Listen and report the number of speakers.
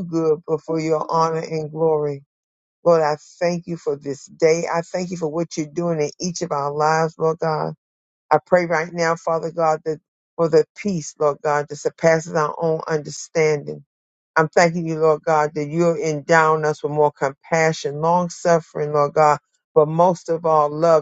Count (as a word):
one